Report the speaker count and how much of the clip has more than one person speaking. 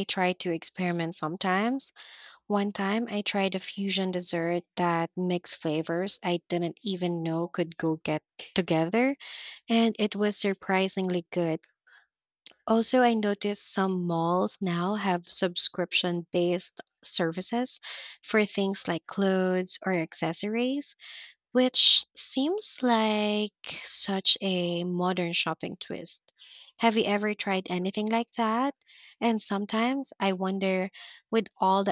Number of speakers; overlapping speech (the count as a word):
one, no overlap